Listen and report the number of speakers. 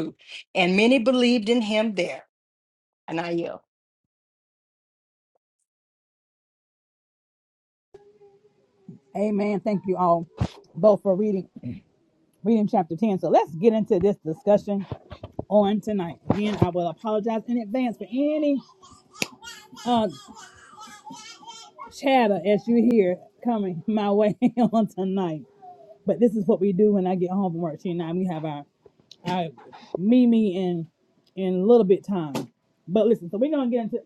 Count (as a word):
two